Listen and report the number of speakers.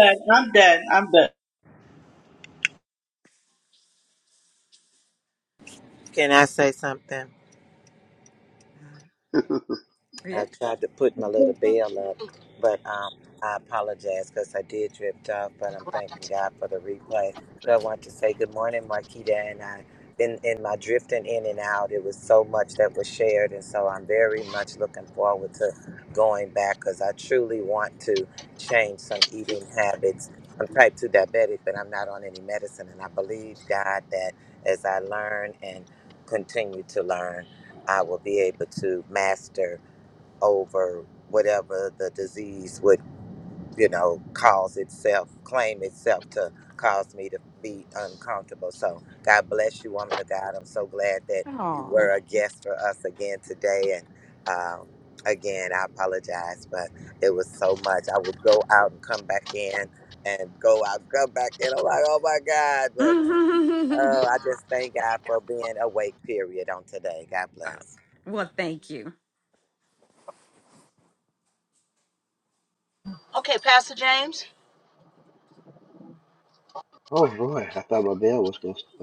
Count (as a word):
five